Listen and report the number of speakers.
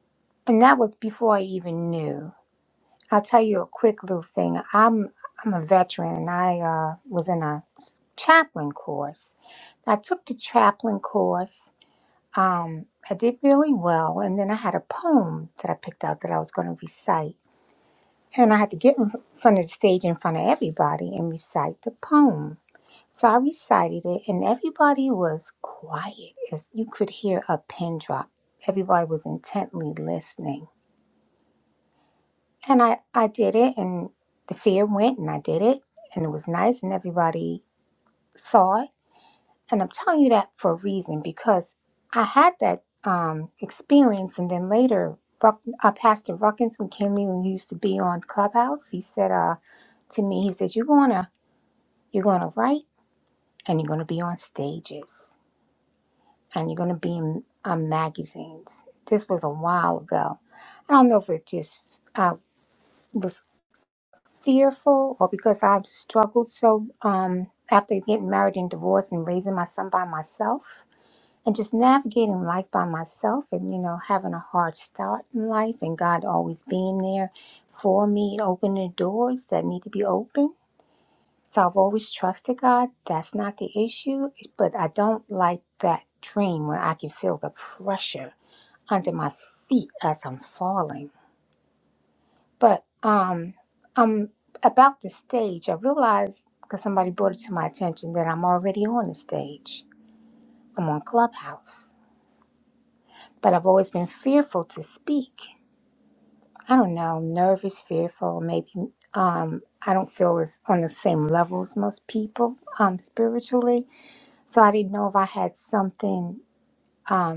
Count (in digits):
1